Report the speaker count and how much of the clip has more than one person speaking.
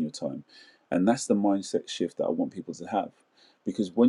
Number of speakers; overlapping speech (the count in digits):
1, no overlap